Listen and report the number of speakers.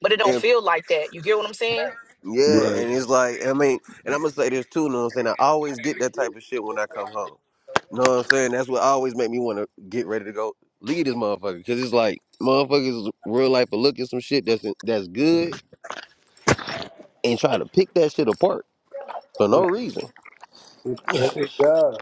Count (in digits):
3